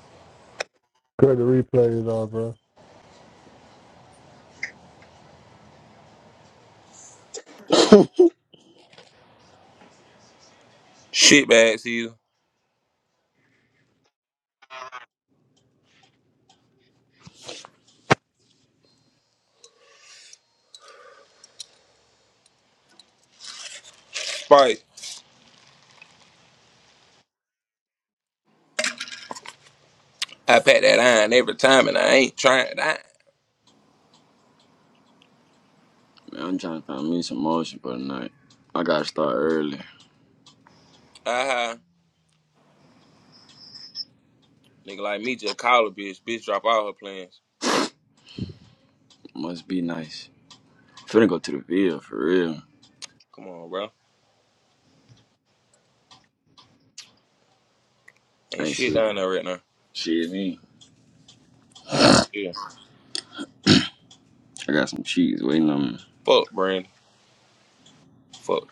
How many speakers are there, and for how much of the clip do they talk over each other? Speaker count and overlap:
3, about 1%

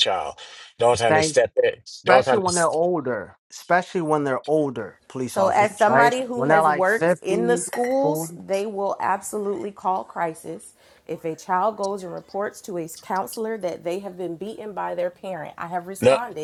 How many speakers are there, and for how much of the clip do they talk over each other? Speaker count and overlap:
3, about 20%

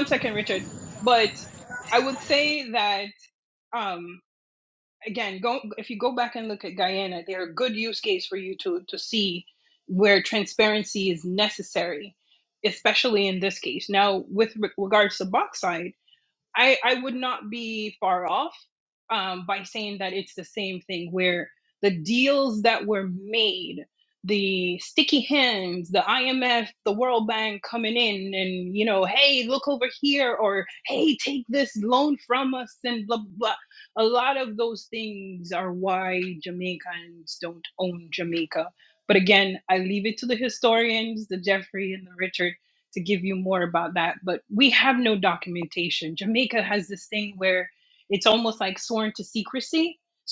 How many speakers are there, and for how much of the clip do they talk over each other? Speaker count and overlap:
1, no overlap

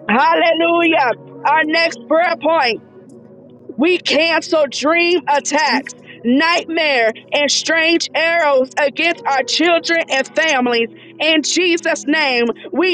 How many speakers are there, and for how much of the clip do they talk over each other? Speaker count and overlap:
1, no overlap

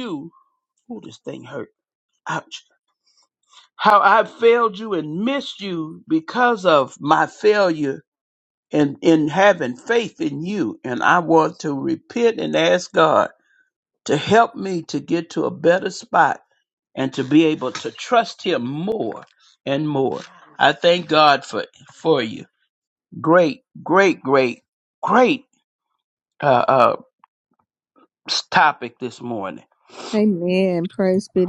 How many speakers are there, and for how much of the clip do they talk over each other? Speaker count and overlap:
2, no overlap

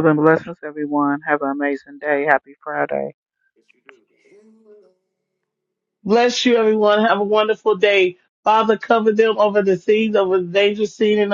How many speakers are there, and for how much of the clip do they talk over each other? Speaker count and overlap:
2, no overlap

